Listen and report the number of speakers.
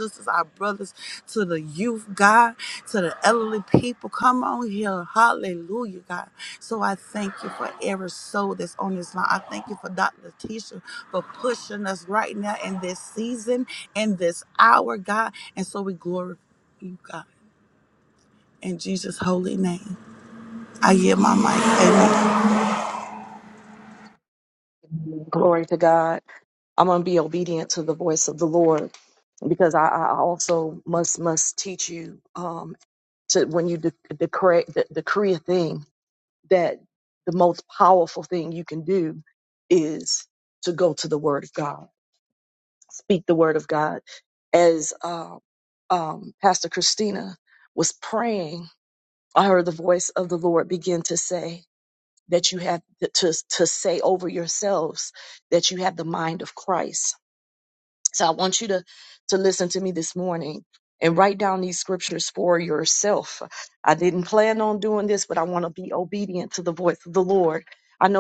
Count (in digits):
2